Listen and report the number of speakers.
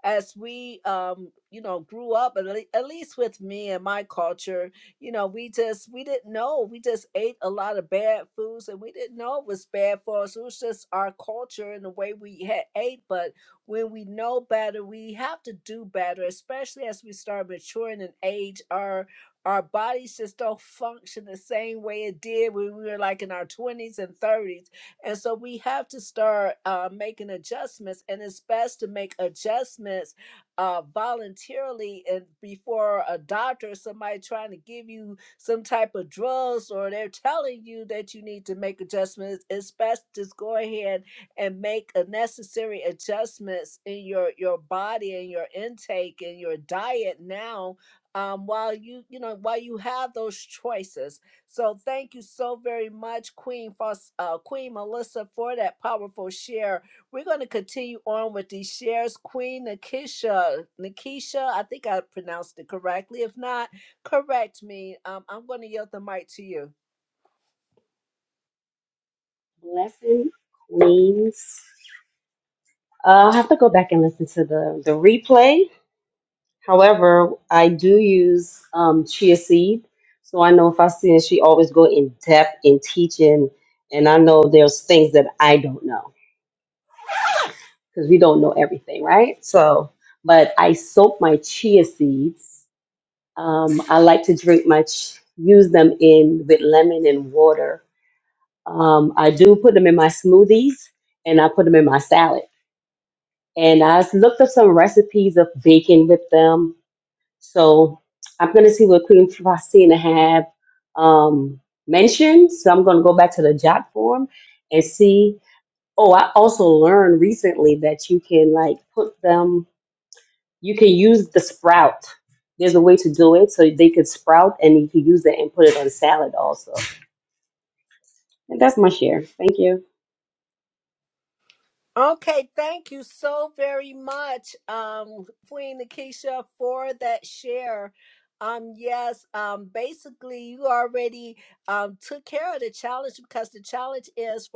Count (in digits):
2